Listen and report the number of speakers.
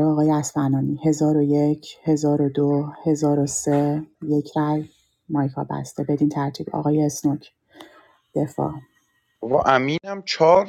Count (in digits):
2